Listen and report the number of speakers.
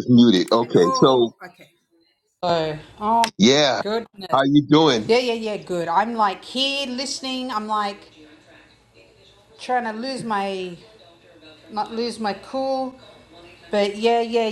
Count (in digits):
2